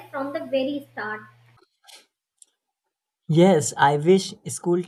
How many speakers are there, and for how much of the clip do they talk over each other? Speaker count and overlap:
2, no overlap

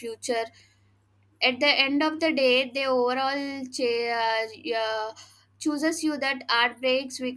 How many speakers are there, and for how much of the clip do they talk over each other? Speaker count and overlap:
1, no overlap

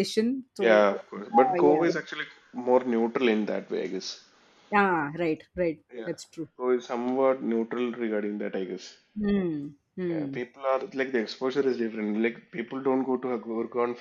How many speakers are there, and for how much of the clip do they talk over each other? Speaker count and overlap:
2, about 13%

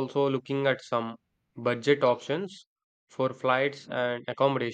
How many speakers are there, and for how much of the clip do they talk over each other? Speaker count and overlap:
1, no overlap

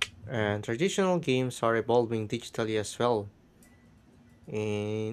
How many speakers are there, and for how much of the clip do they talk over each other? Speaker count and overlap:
1, no overlap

